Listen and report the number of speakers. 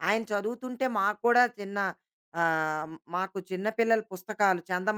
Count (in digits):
1